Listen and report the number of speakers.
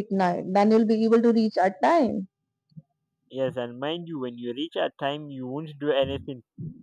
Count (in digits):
2